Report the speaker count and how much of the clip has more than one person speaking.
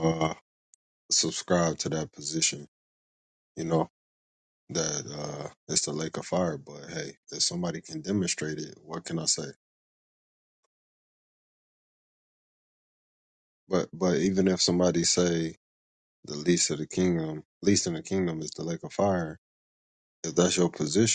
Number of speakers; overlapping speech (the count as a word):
one, no overlap